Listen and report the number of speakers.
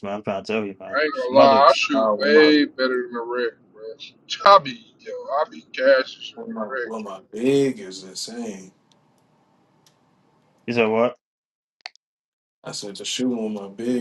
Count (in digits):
3